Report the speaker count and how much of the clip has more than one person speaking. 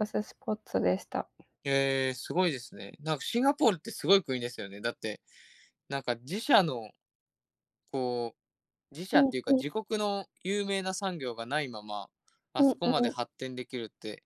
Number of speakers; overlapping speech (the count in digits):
2, about 7%